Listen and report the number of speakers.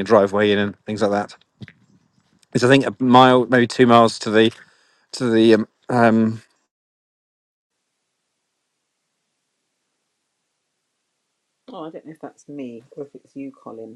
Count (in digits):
2